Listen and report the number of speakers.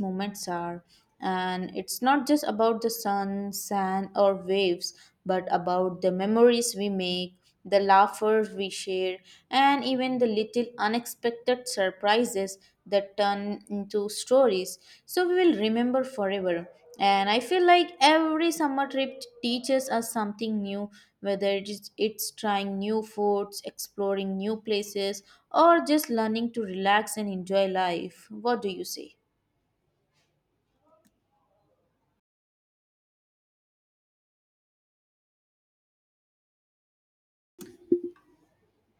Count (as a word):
one